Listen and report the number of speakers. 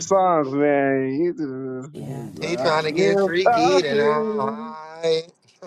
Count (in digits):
2